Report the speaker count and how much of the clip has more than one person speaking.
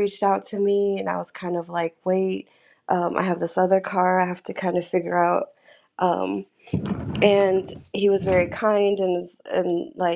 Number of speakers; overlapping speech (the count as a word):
one, no overlap